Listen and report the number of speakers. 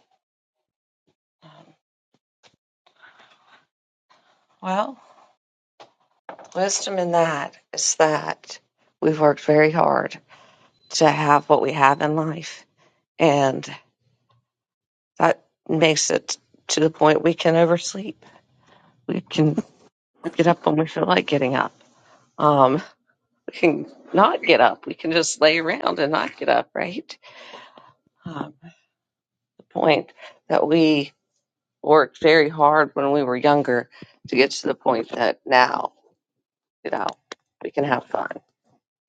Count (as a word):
one